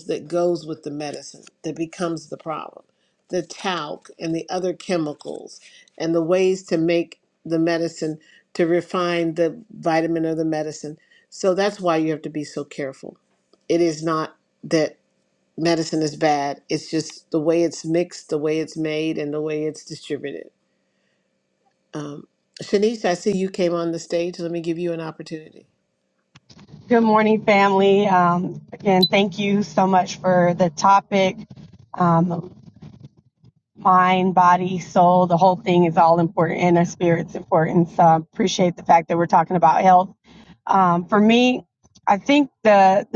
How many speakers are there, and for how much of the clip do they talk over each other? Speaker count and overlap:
2, no overlap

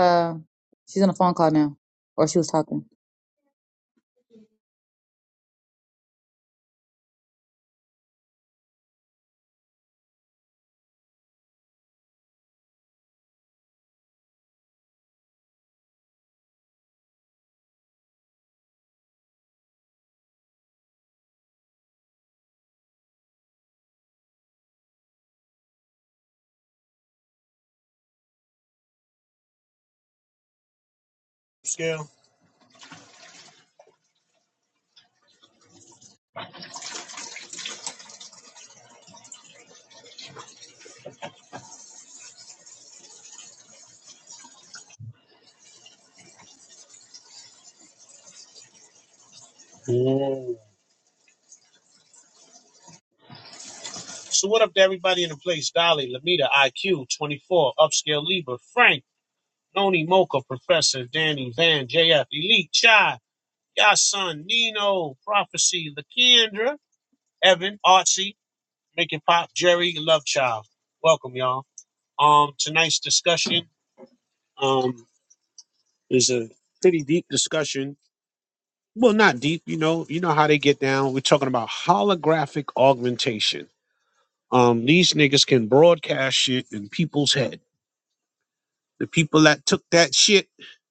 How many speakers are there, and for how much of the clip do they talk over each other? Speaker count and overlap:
2, no overlap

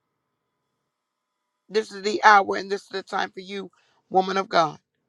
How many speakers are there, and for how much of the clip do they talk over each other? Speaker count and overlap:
1, no overlap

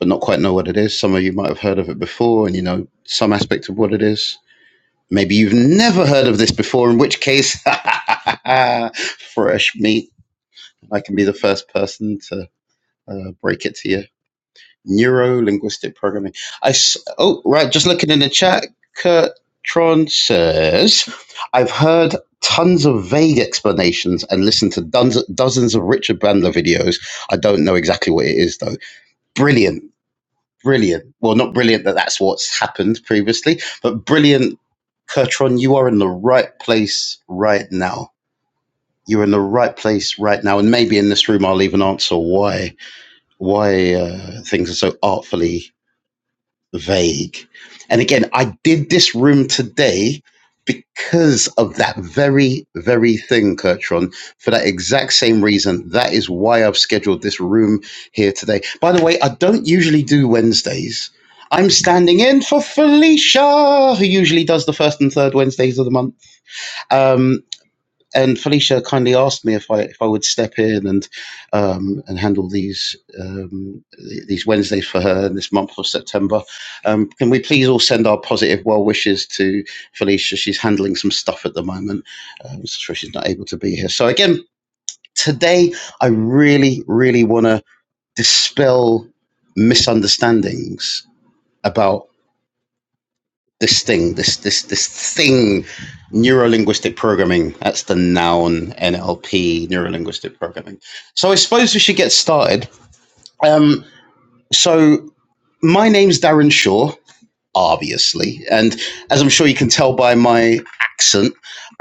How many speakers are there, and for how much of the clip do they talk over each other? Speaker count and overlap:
1, no overlap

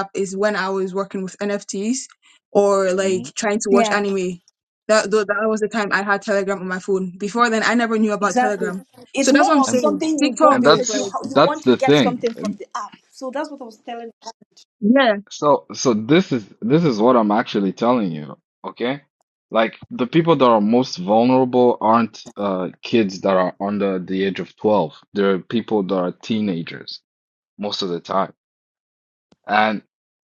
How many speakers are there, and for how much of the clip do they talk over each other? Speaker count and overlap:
3, about 14%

